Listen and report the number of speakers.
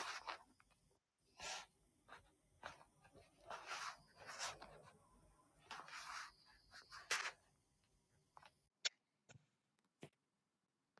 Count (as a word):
zero